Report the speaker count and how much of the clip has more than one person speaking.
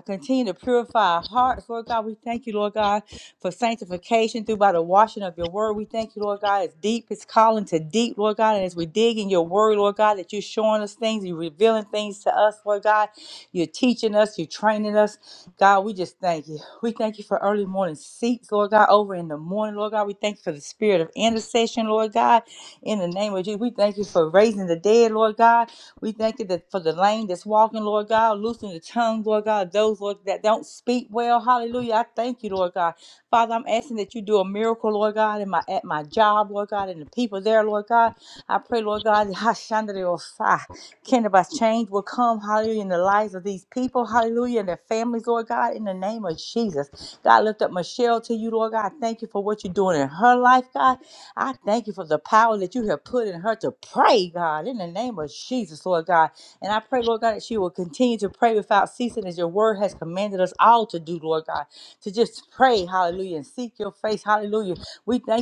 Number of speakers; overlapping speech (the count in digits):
1, no overlap